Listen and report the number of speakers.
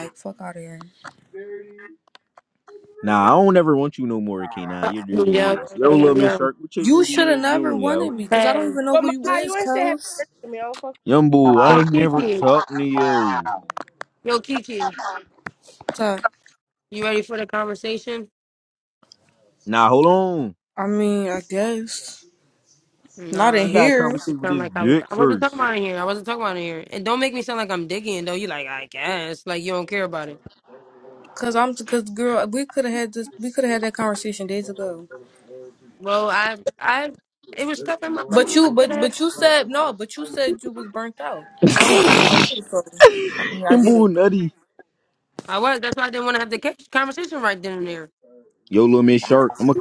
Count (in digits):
4